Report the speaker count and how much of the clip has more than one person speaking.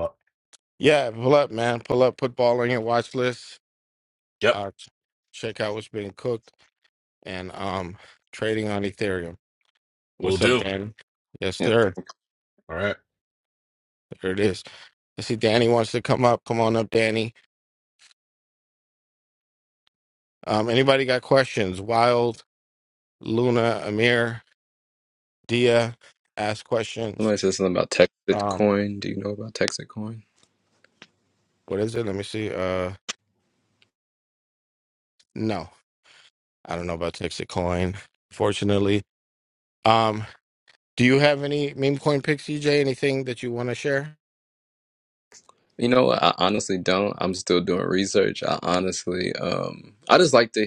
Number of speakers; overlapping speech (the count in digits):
3, about 2%